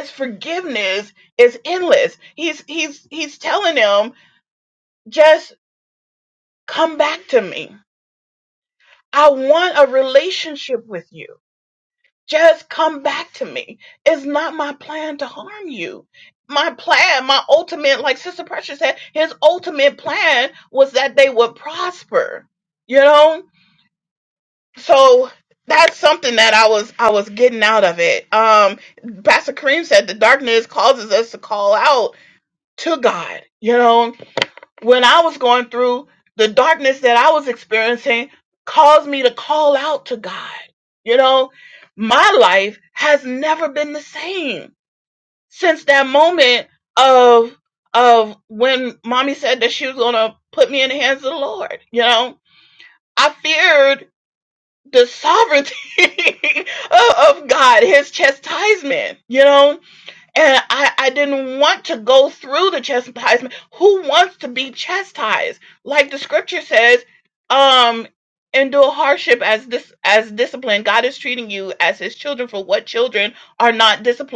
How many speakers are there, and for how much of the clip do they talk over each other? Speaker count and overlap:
1, no overlap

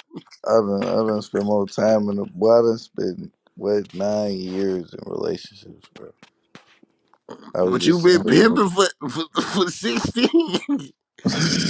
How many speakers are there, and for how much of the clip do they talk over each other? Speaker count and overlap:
2, about 7%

